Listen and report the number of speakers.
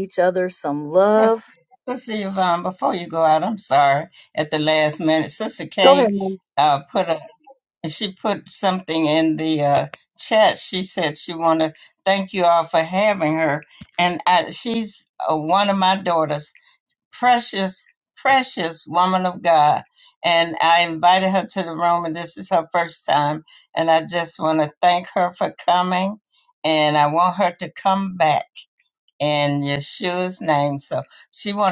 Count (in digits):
2